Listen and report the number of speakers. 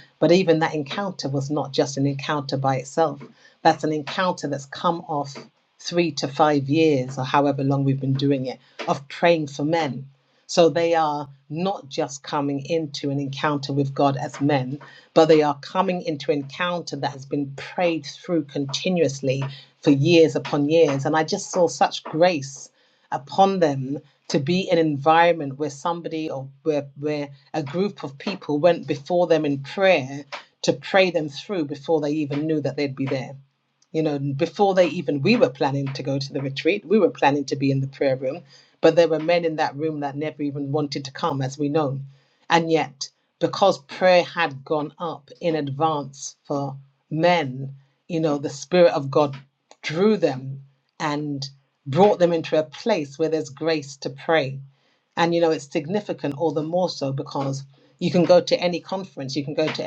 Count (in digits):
1